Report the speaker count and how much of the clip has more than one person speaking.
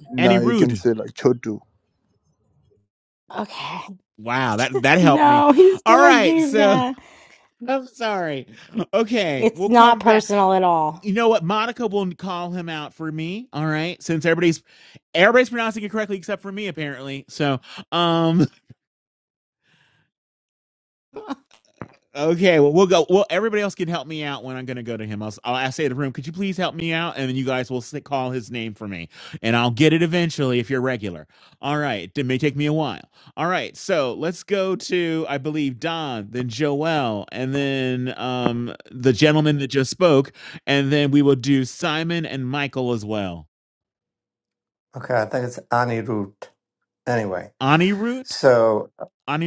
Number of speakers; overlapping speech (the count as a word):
four, about 6%